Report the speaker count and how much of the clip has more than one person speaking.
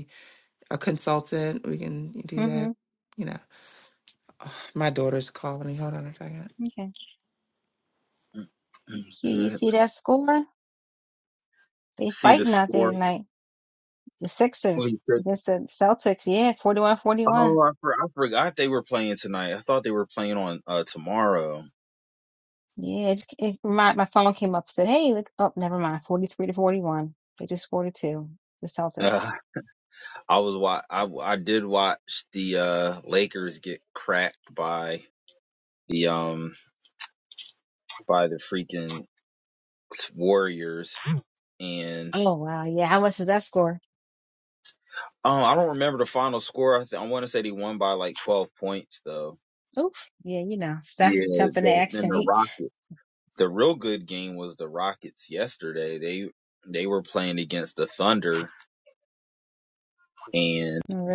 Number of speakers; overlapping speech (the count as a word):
three, about 5%